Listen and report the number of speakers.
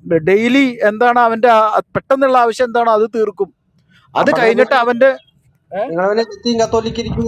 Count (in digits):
2